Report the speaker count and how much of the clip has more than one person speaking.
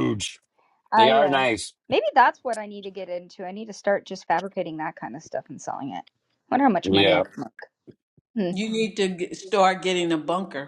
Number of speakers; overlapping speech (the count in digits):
3, about 9%